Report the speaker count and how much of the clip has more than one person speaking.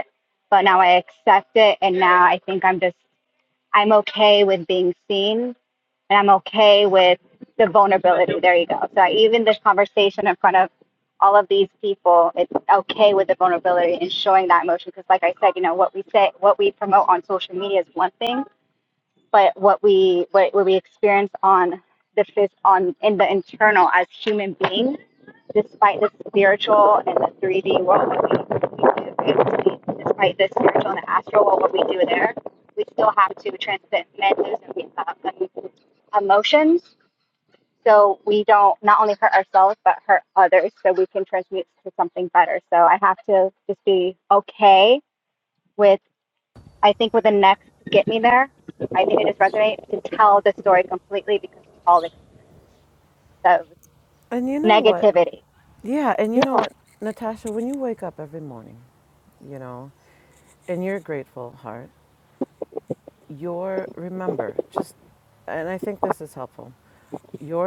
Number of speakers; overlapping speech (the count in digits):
2, about 1%